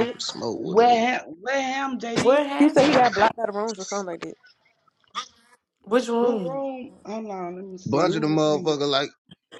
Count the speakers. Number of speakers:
four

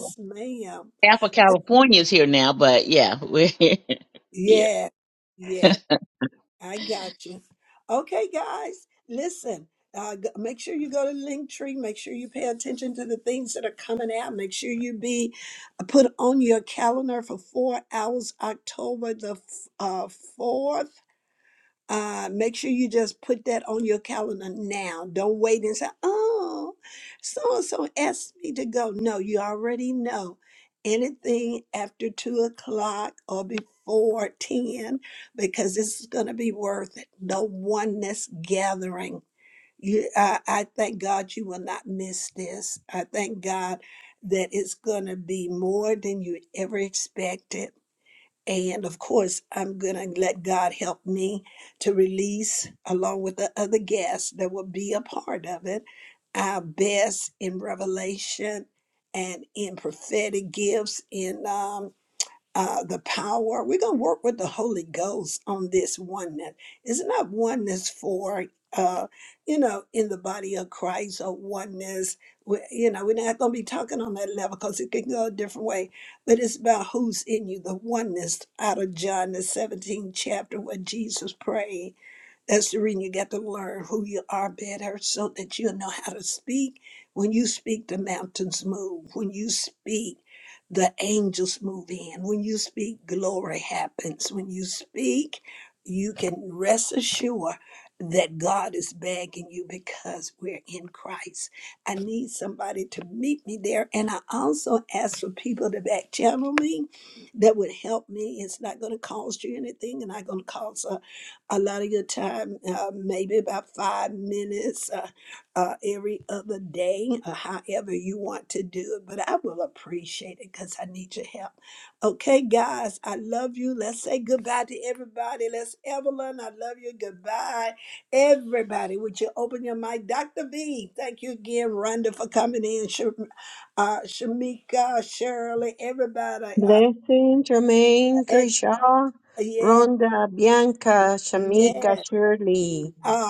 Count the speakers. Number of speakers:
three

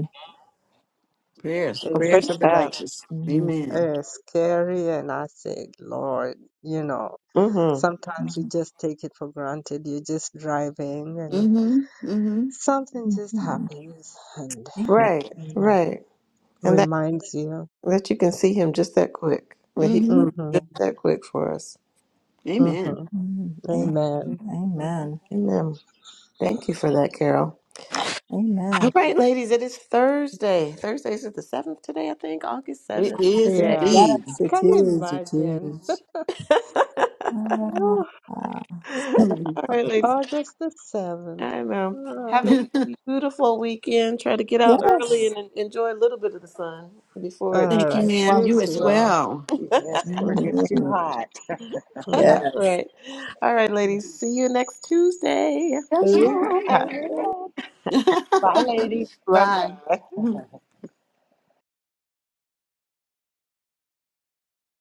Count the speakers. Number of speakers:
five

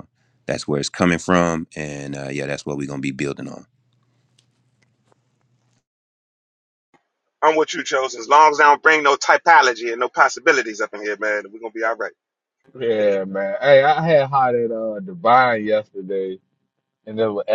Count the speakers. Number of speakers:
three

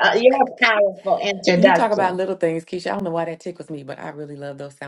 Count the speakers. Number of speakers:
two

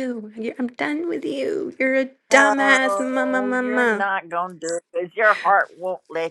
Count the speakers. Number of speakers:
two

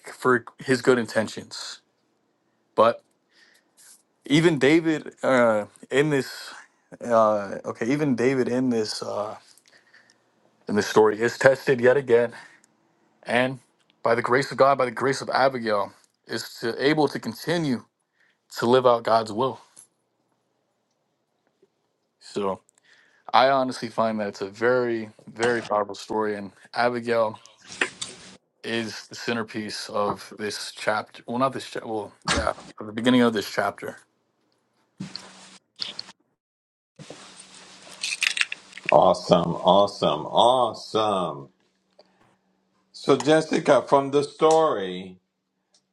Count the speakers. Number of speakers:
two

